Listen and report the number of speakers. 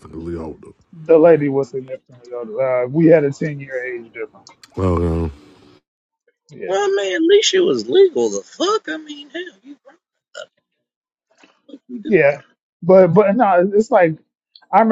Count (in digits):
3